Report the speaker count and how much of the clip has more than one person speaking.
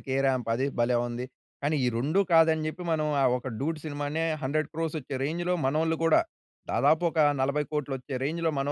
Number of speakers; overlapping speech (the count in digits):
1, no overlap